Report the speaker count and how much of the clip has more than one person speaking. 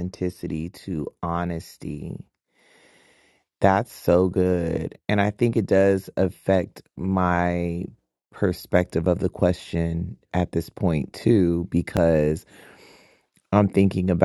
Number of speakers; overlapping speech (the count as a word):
one, no overlap